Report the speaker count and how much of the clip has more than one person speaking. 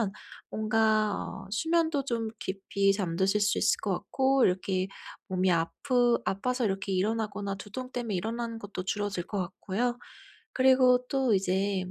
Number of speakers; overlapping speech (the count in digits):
1, no overlap